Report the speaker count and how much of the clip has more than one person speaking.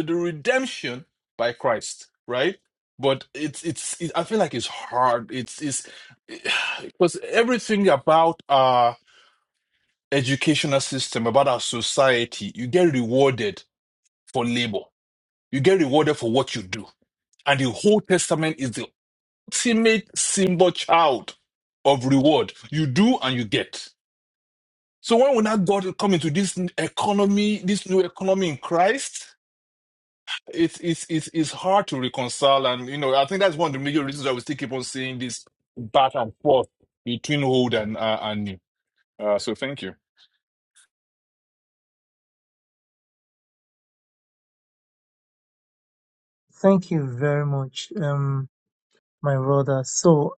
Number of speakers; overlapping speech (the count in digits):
2, no overlap